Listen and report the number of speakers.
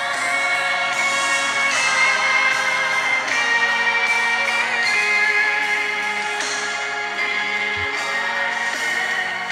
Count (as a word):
zero